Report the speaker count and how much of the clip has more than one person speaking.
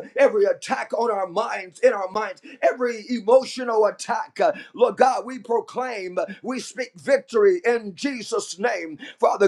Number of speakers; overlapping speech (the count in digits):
1, no overlap